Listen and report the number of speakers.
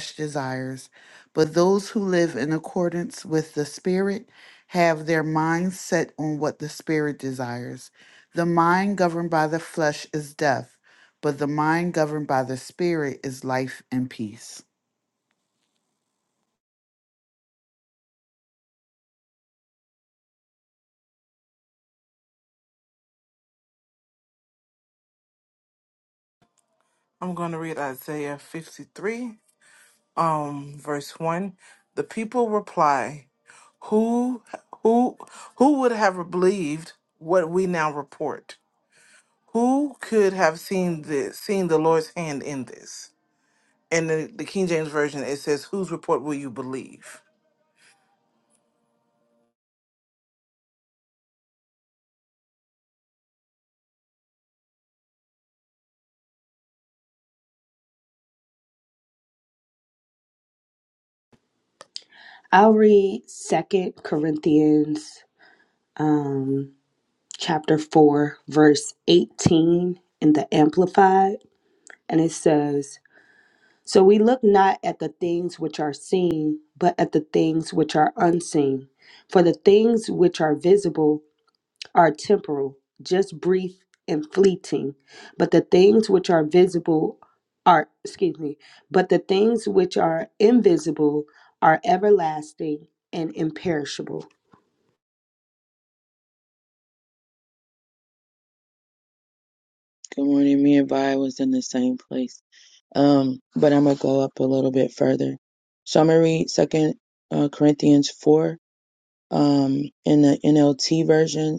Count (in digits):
4